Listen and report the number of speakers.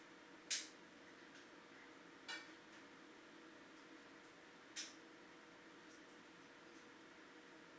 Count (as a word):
zero